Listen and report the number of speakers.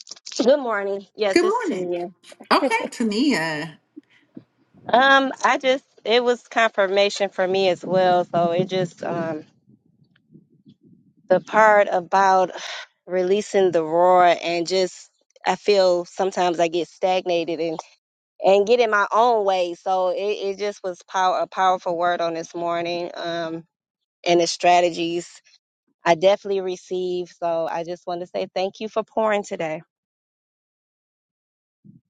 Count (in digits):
2